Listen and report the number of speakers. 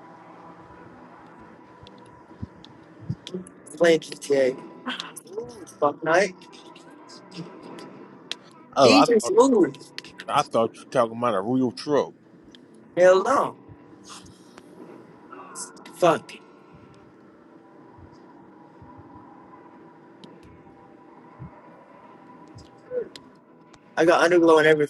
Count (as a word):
two